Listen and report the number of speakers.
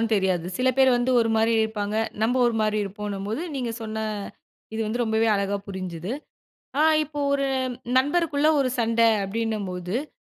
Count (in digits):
1